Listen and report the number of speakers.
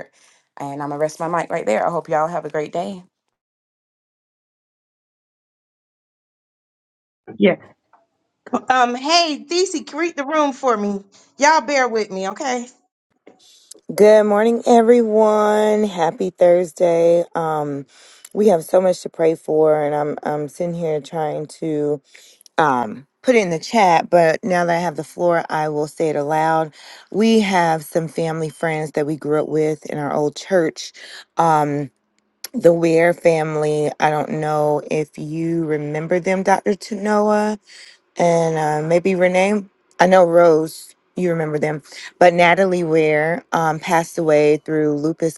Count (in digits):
3